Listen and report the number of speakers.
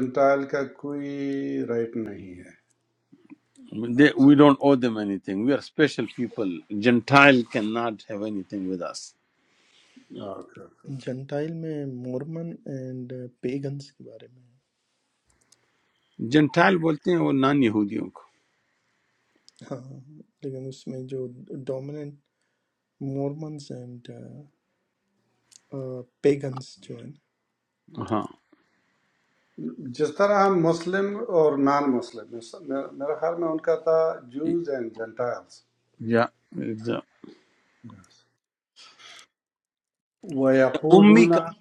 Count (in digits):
3